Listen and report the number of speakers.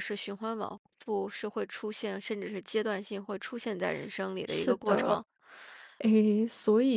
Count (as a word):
two